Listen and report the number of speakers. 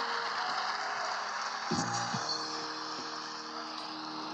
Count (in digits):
0